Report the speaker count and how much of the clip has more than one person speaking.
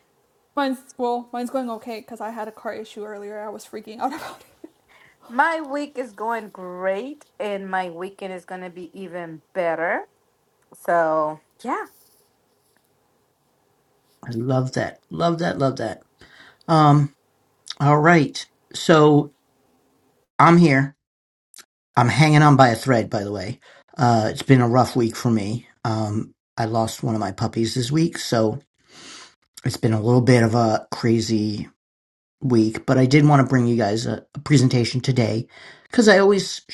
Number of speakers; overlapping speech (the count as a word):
three, no overlap